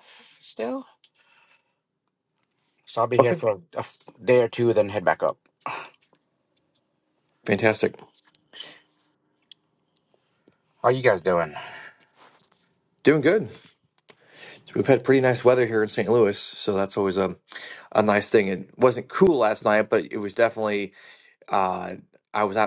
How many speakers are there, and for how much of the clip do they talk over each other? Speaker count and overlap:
2, about 1%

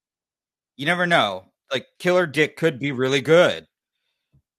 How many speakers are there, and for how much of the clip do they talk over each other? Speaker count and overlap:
1, no overlap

